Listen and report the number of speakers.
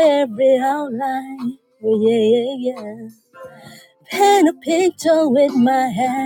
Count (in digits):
1